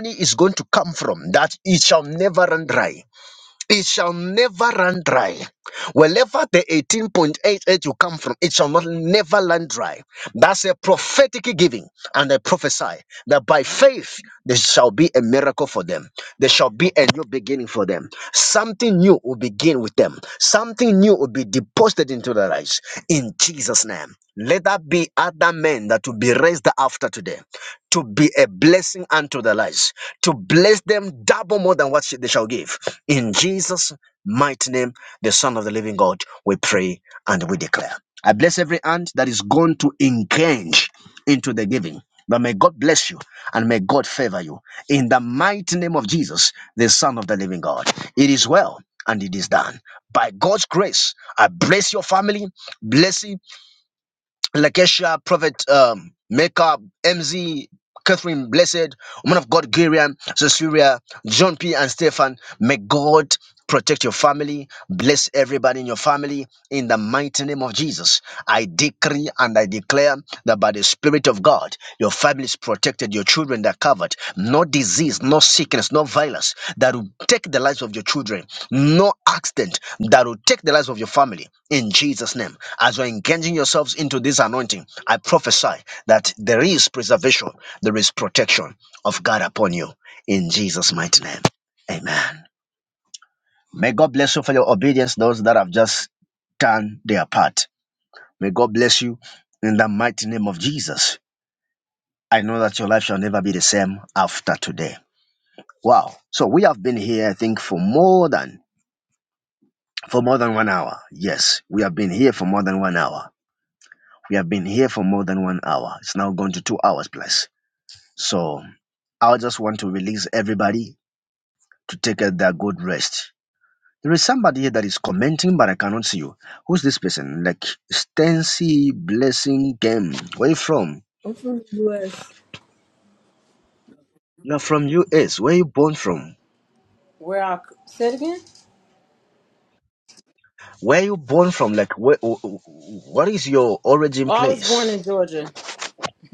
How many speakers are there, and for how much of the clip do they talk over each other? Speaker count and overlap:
2, under 1%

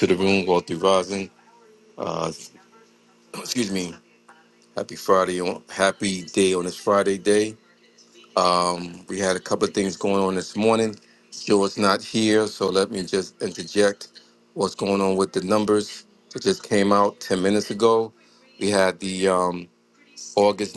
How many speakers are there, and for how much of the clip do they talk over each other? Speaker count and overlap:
1, no overlap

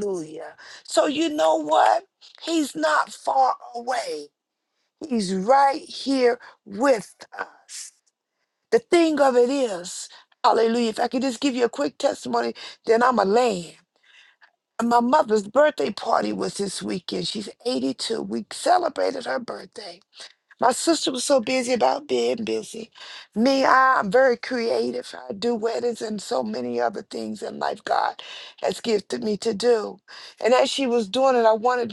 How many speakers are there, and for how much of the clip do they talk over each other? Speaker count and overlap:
1, no overlap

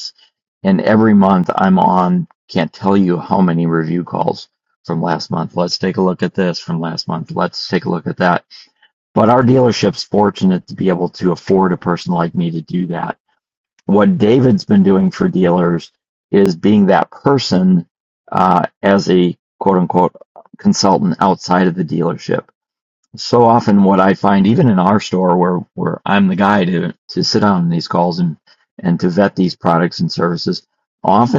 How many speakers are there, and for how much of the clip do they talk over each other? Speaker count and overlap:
1, no overlap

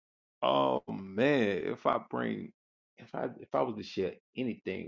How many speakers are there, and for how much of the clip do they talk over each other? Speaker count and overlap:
1, no overlap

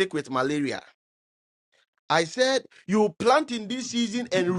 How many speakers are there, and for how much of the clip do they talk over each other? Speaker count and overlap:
1, no overlap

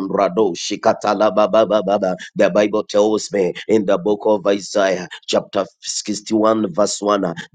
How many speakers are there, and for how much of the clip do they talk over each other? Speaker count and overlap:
1, no overlap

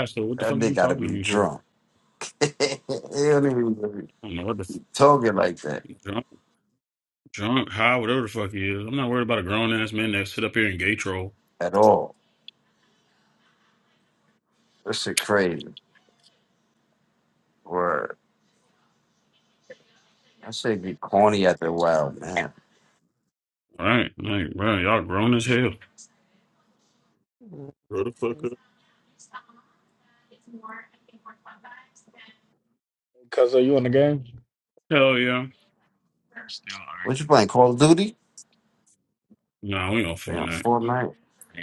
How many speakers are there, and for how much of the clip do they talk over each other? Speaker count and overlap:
3, about 4%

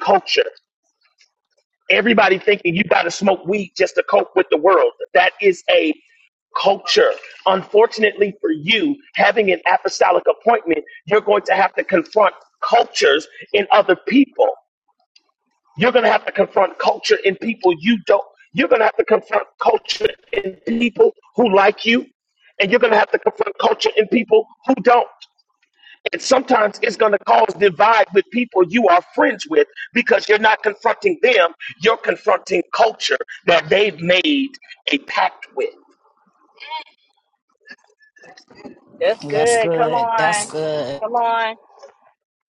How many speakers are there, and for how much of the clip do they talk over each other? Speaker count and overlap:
3, about 3%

